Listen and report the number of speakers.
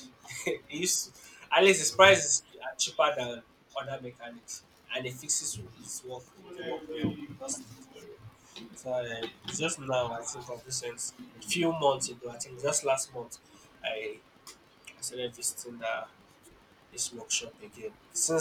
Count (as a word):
one